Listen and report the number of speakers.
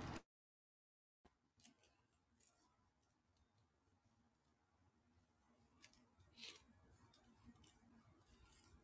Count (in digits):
0